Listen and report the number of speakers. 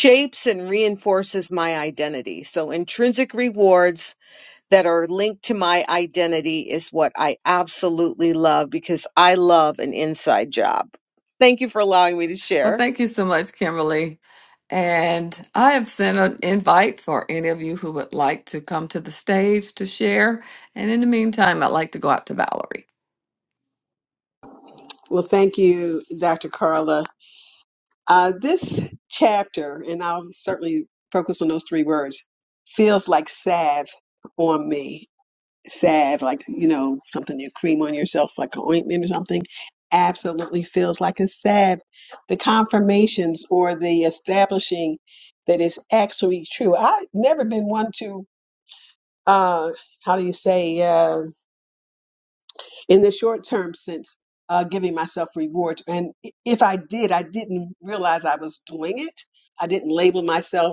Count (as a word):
three